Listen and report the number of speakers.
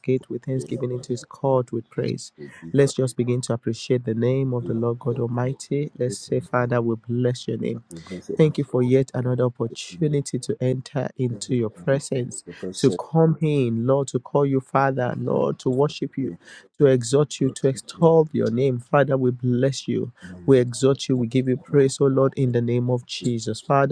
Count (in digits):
1